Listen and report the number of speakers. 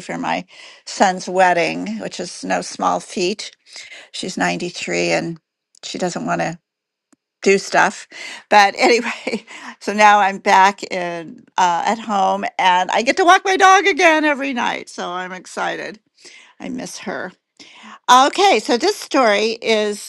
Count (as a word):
one